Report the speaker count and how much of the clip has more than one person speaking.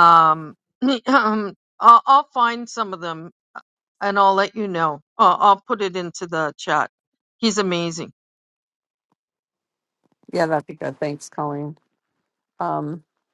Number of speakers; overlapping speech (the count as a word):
two, no overlap